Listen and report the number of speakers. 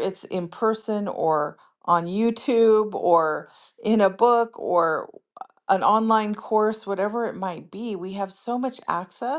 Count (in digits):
1